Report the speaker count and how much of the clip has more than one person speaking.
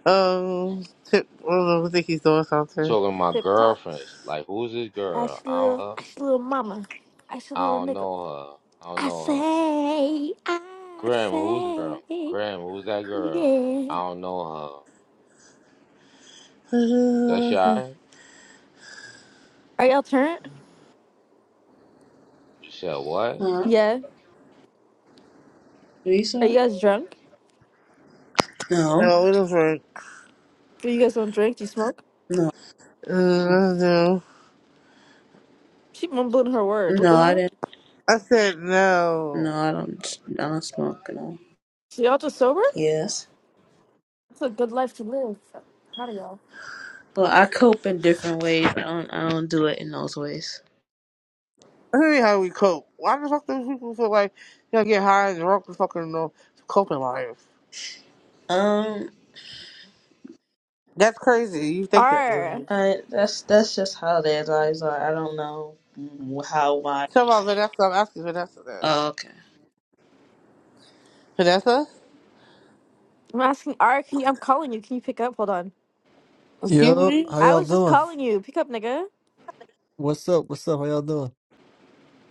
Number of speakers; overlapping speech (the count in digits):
5, about 9%